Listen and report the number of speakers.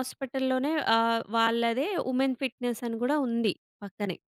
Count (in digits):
1